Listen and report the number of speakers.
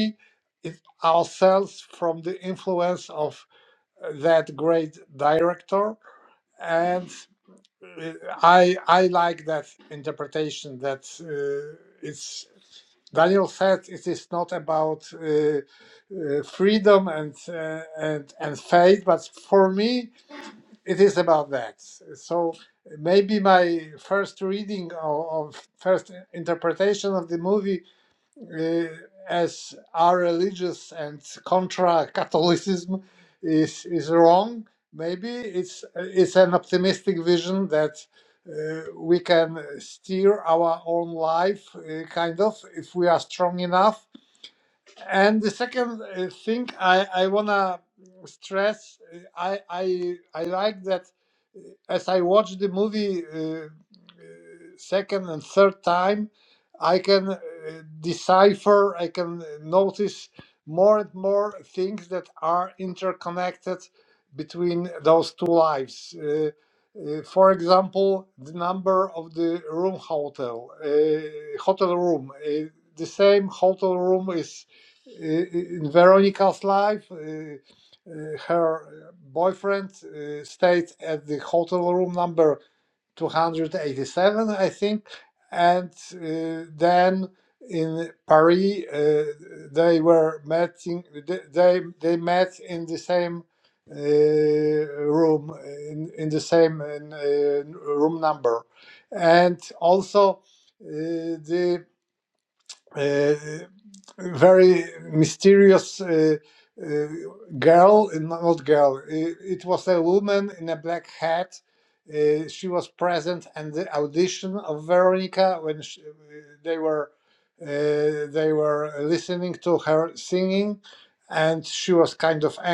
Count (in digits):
1